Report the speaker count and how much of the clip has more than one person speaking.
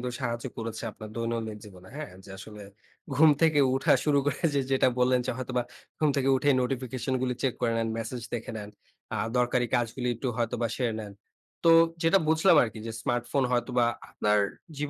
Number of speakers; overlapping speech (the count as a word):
one, no overlap